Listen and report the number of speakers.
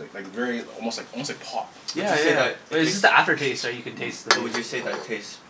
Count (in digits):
3